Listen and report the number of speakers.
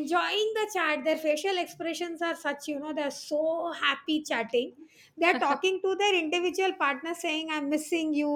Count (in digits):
1